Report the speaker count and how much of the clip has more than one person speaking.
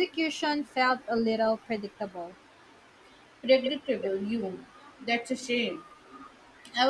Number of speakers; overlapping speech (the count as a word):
two, no overlap